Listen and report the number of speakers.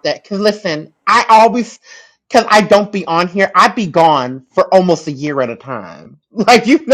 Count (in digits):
1